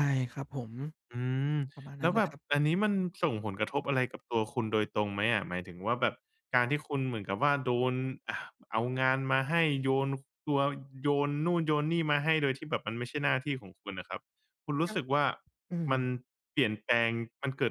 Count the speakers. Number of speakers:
two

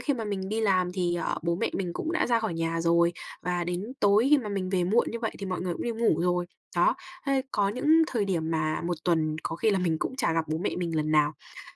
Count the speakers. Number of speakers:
one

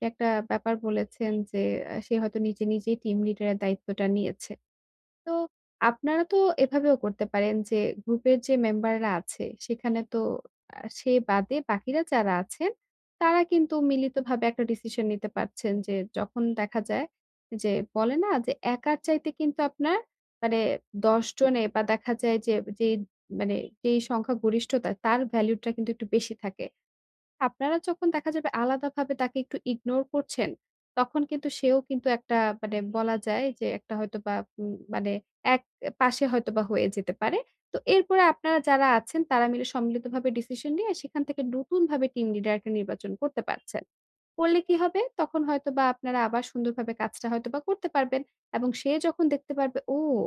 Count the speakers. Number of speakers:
one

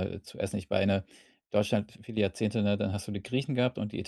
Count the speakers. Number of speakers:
one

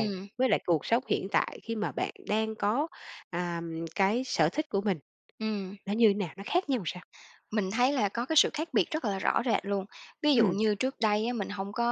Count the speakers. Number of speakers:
two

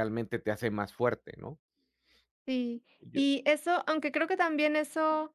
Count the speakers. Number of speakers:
two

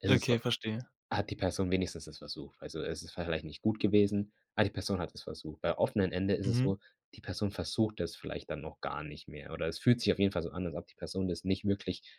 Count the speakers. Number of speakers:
two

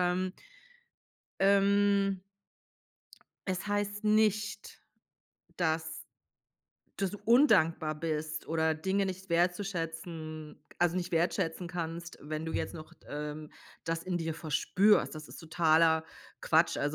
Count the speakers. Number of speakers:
one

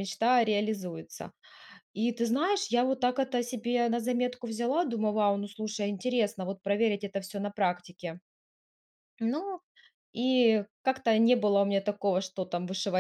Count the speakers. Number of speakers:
one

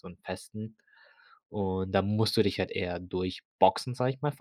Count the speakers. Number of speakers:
one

